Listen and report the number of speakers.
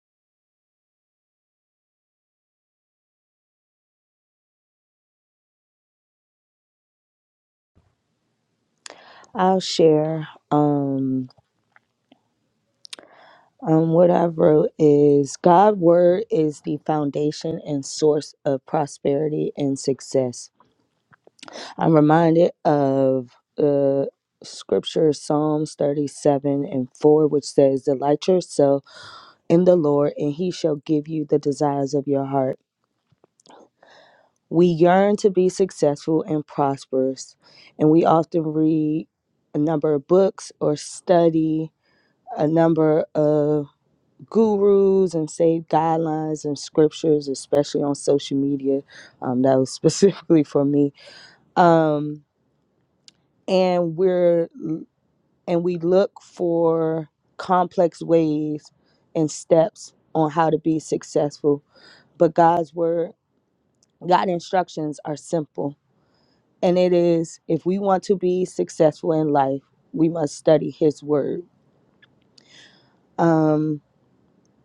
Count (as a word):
one